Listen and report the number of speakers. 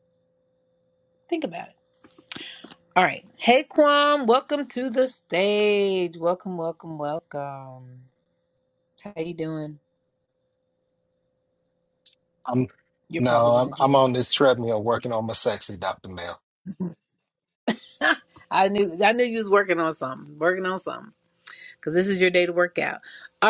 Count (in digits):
2